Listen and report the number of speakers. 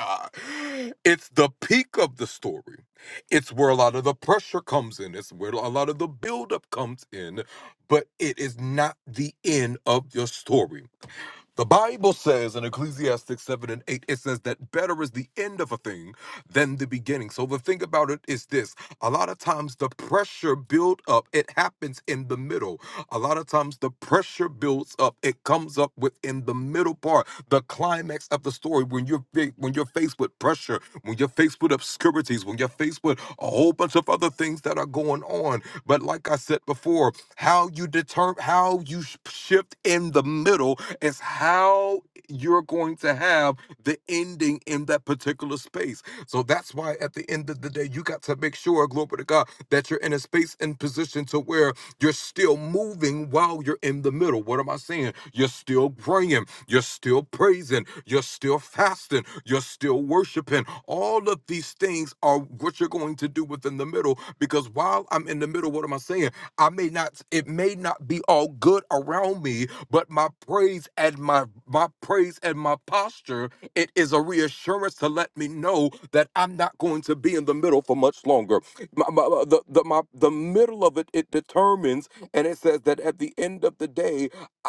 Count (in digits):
1